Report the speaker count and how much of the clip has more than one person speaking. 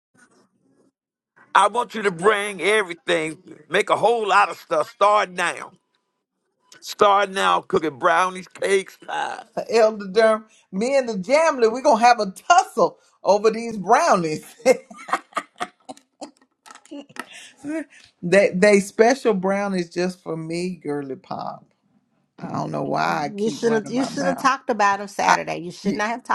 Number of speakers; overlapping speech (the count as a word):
three, about 7%